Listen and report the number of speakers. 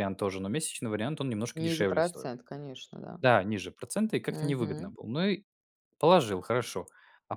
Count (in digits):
2